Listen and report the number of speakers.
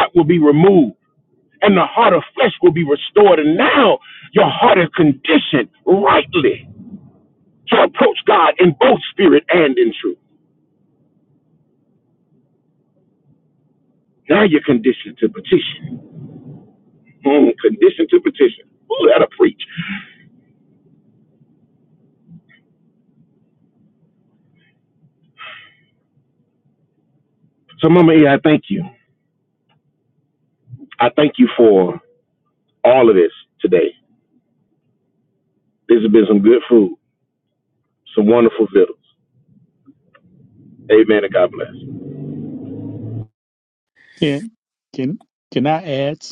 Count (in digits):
2